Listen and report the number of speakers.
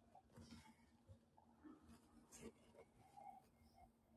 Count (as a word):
zero